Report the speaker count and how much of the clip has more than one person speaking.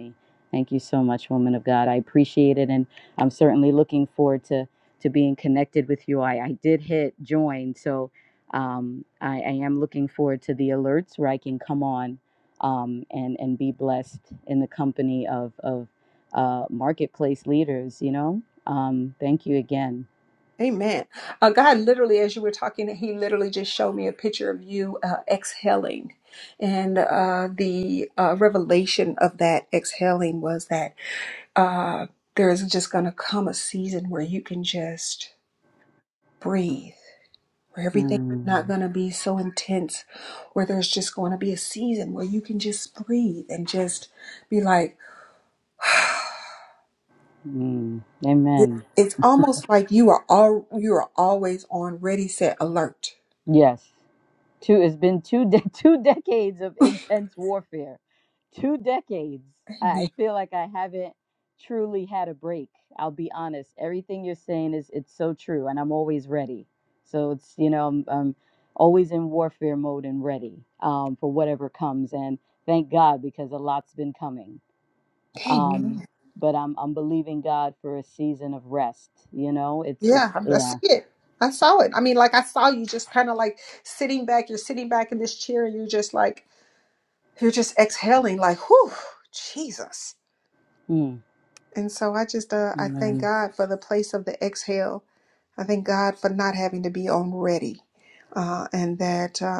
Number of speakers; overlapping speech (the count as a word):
two, about 2%